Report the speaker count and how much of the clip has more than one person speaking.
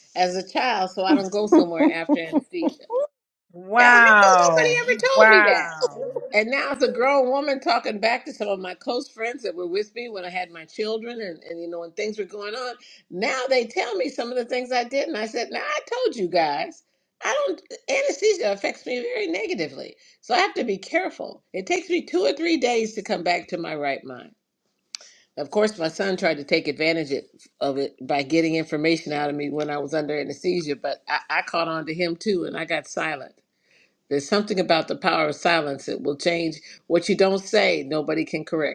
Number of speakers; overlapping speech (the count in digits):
2, about 3%